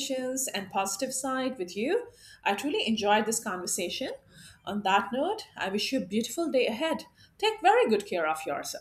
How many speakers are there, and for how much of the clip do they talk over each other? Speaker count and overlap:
1, no overlap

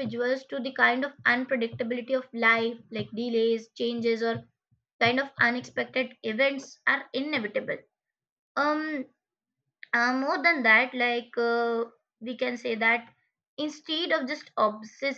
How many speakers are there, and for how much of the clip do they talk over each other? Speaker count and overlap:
1, no overlap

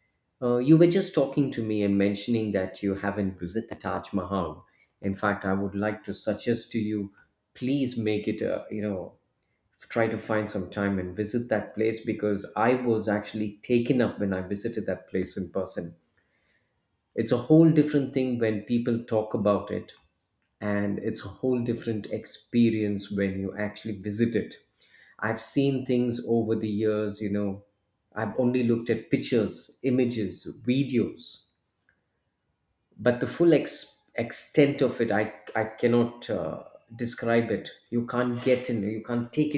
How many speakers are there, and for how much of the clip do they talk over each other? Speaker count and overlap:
1, no overlap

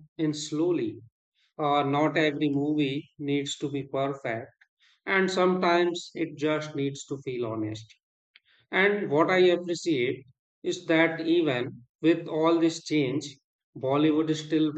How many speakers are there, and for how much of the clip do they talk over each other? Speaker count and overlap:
1, no overlap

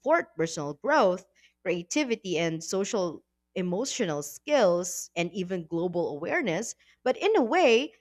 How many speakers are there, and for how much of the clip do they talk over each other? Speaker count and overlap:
1, no overlap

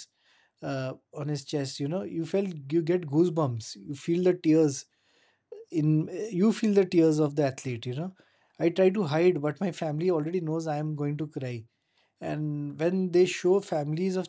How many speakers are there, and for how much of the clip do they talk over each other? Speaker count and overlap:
1, no overlap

